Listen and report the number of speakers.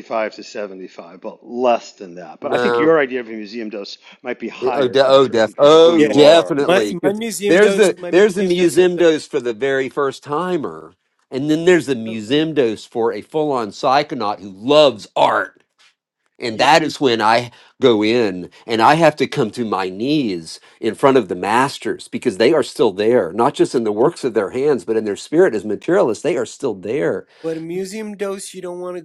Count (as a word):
three